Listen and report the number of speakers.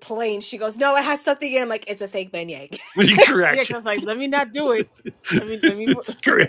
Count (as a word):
three